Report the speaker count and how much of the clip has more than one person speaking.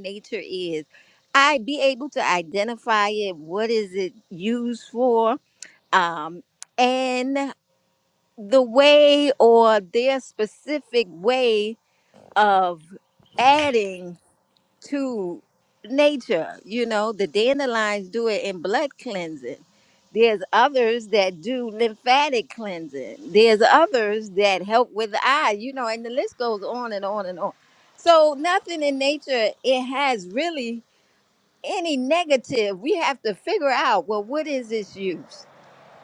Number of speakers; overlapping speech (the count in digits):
1, no overlap